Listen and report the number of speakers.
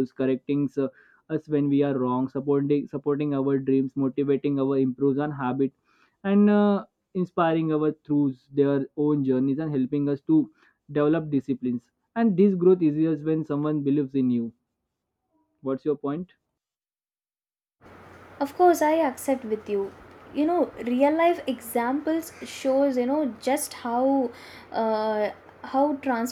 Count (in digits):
2